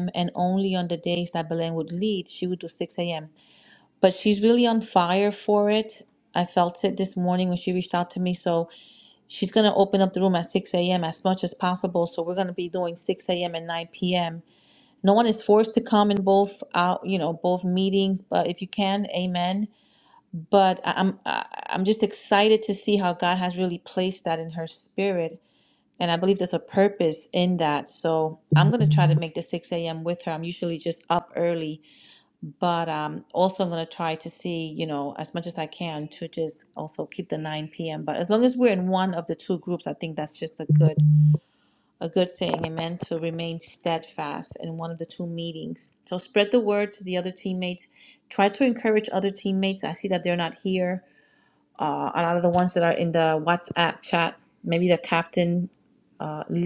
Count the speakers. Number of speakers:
1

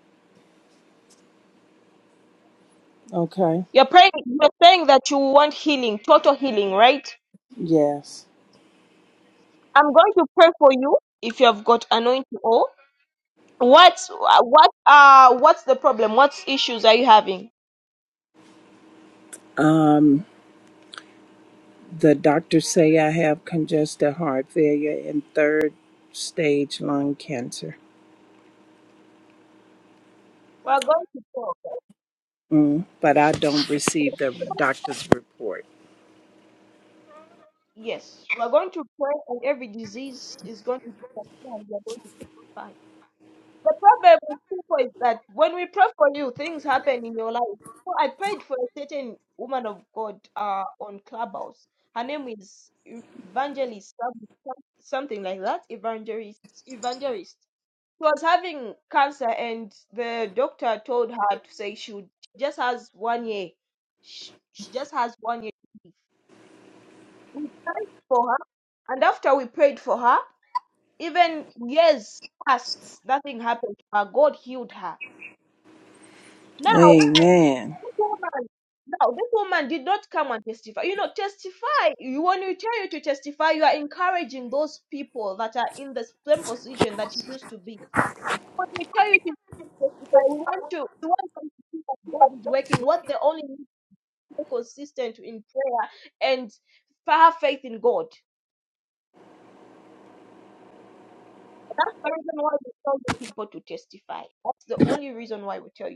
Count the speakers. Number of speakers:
2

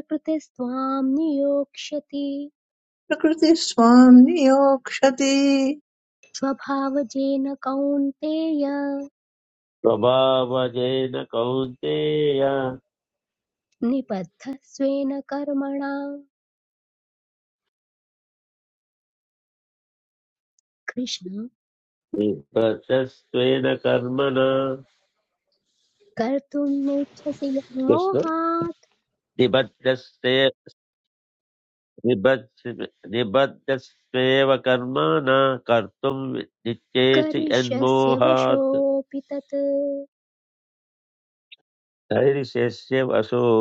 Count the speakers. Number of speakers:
3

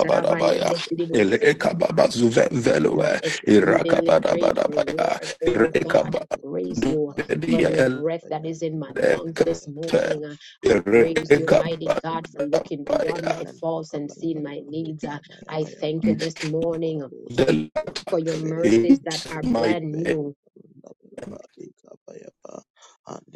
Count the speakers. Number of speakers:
3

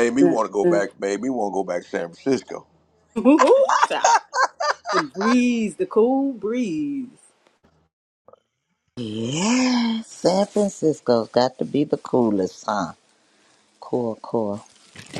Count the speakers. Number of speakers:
3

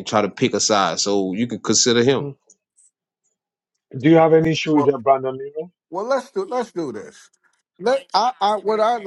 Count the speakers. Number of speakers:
3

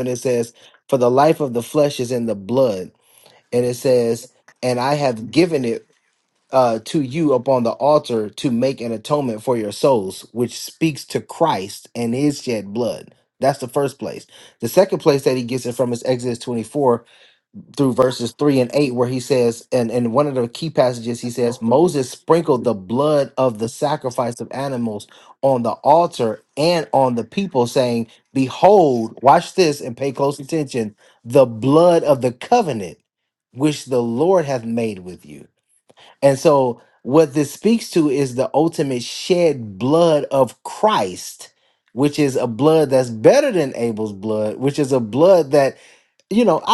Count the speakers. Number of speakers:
1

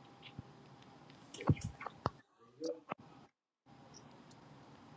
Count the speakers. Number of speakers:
0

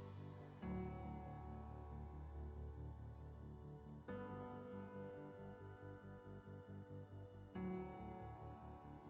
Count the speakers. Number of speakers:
0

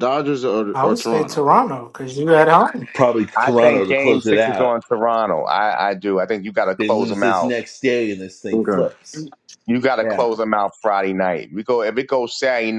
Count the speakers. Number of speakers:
4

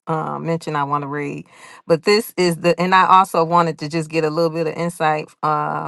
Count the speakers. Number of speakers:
1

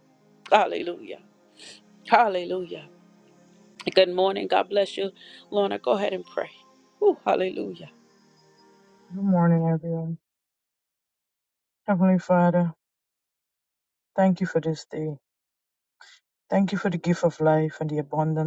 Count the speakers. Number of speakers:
2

